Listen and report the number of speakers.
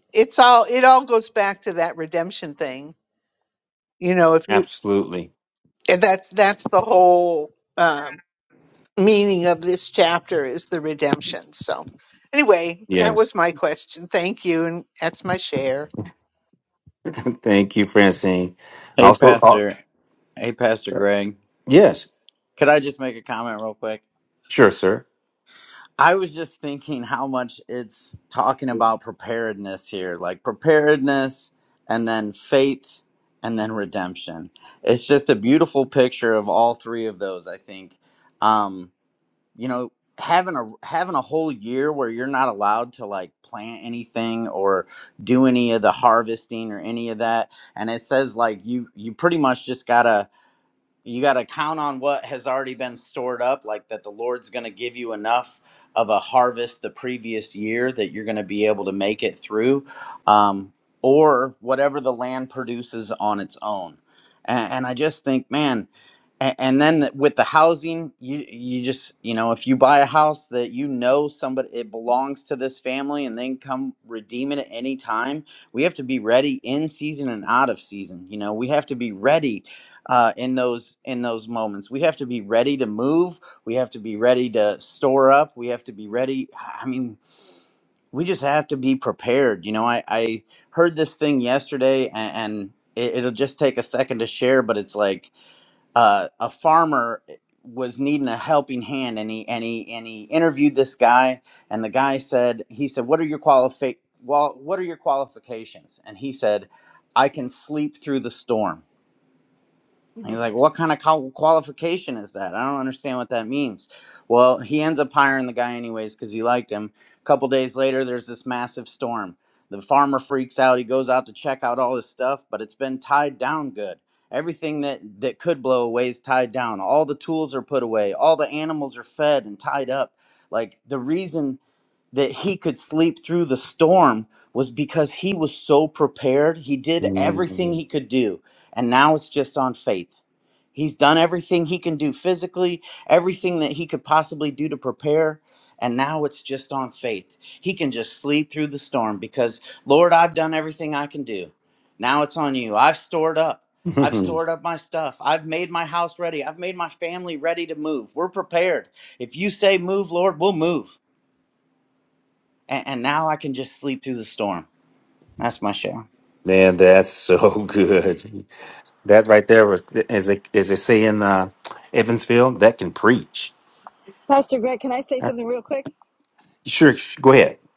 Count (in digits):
4